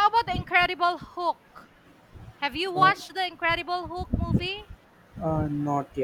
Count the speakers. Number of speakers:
2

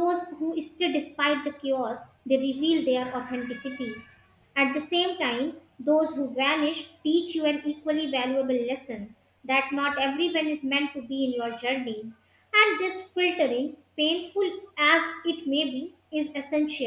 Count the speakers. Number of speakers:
1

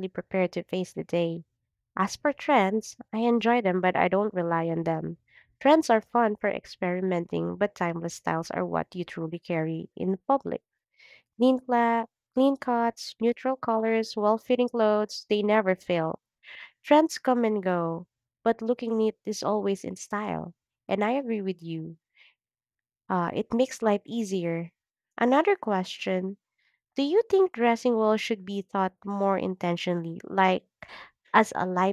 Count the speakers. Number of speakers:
1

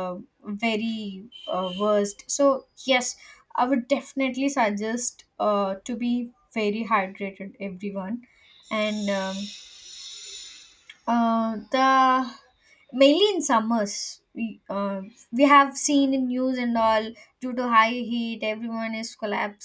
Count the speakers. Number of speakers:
1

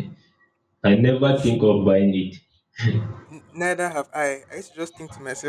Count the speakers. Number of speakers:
2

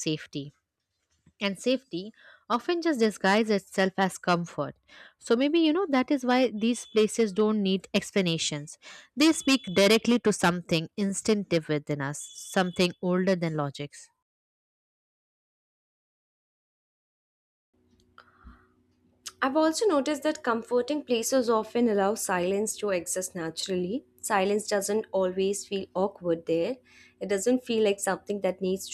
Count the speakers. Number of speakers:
2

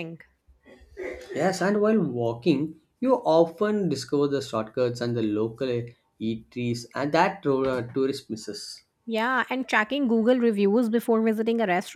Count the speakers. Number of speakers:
2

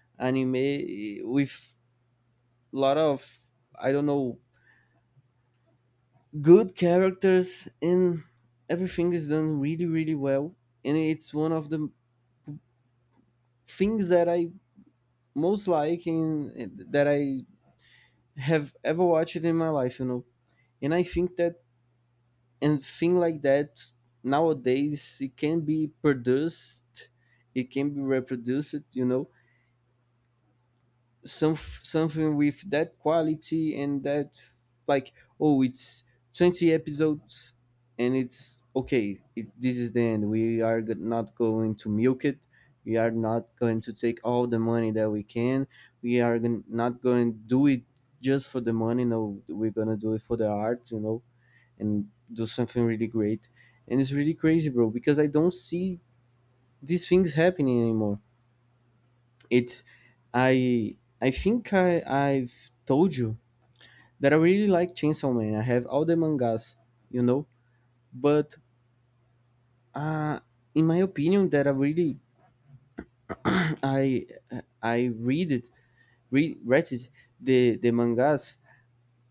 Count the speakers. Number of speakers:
1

